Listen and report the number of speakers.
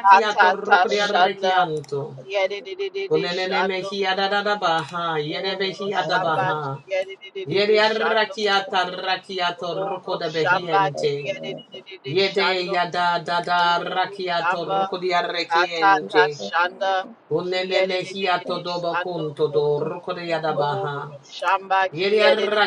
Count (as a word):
two